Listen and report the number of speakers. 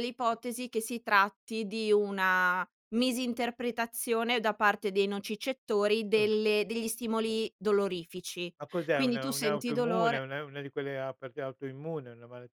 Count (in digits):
2